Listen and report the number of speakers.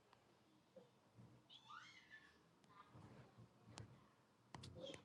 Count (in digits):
0